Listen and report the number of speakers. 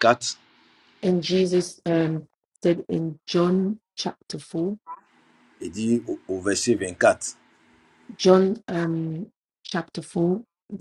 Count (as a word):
two